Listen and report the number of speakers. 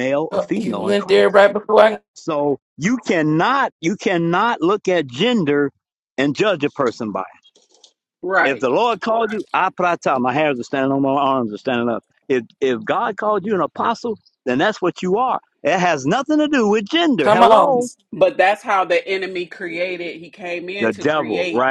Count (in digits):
3